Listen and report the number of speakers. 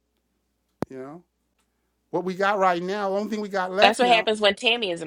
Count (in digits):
2